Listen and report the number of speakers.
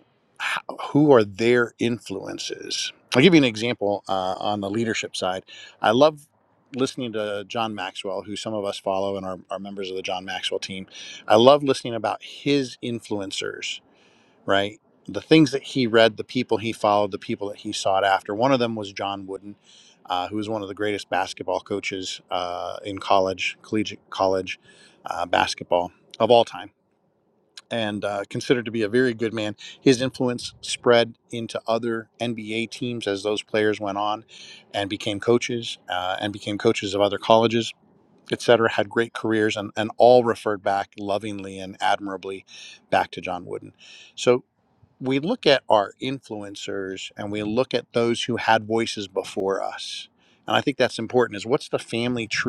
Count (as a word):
one